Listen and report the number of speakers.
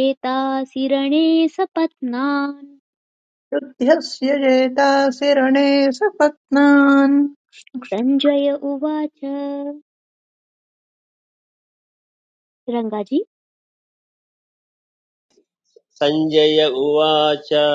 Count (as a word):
three